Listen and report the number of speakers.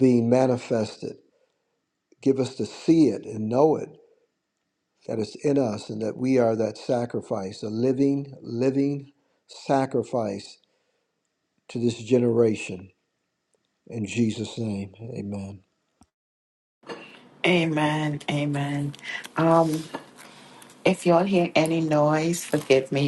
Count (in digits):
2